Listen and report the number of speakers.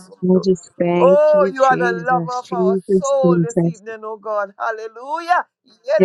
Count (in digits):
2